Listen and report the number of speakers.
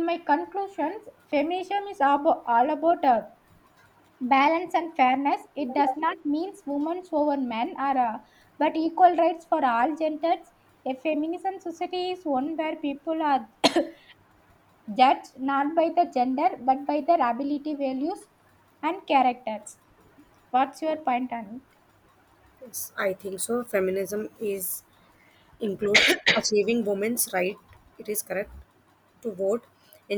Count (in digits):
2